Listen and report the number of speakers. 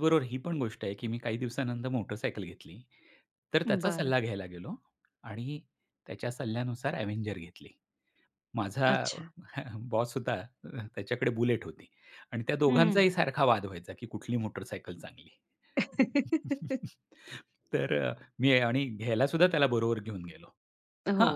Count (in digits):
2